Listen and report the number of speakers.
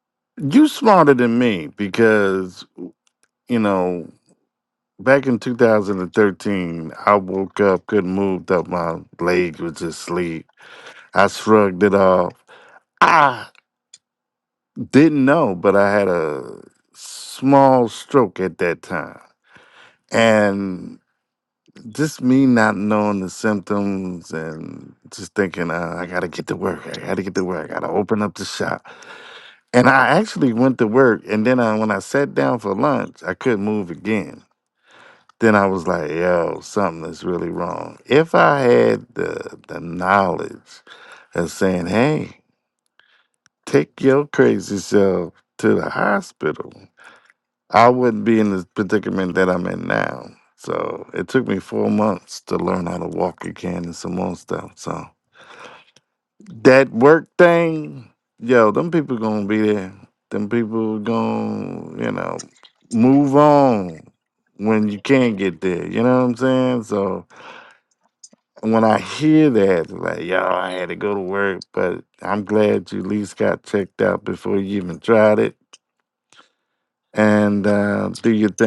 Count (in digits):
1